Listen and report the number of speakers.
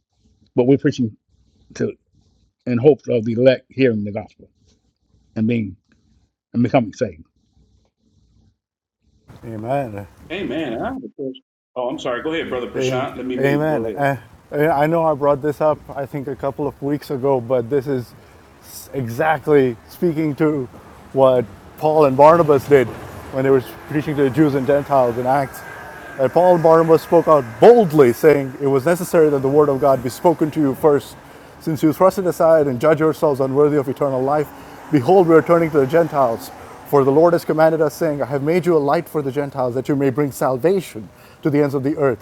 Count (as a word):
three